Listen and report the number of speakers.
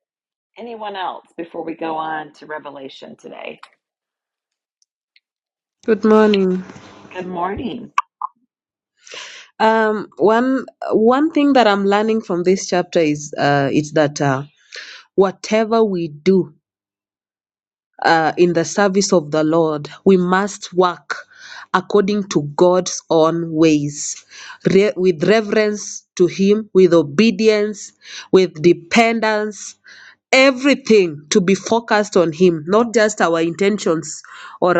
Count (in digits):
2